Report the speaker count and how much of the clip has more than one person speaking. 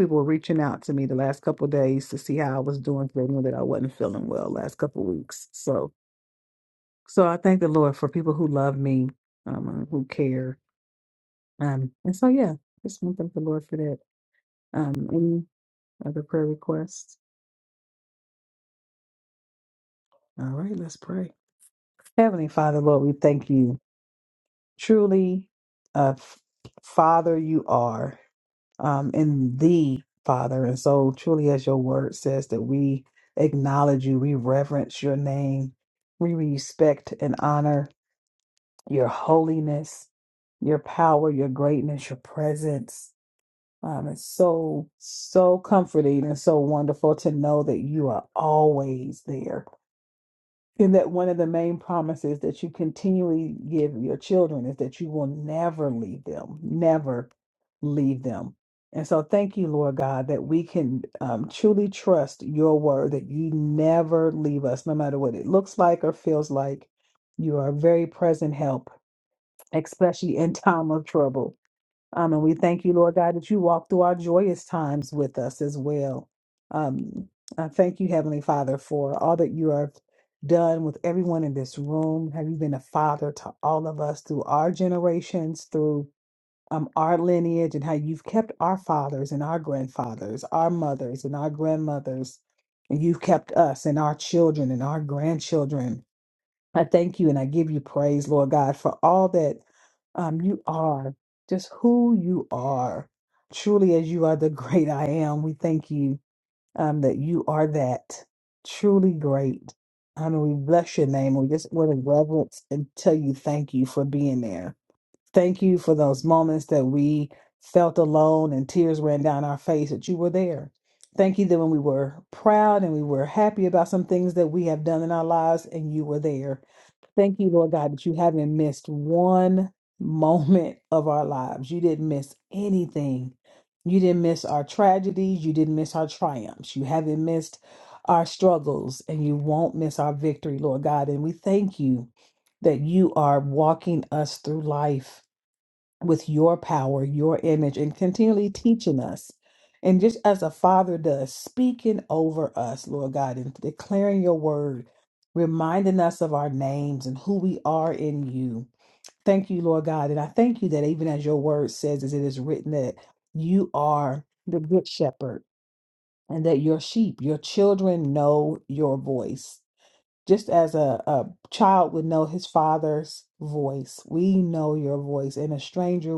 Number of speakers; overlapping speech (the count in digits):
1, no overlap